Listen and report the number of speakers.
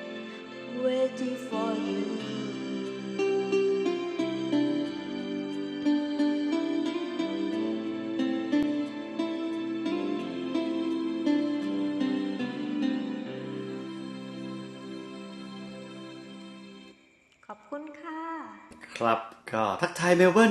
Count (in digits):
2